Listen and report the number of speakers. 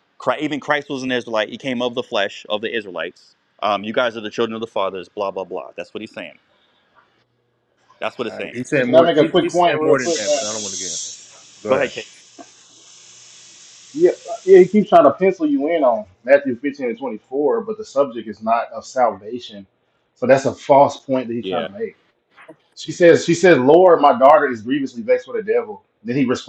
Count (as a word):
three